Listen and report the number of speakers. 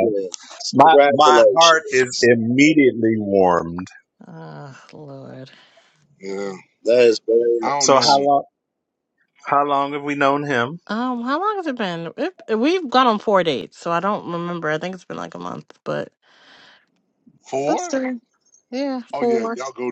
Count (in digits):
4